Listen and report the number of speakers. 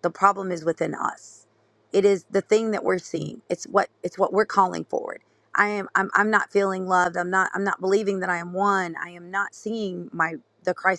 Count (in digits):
1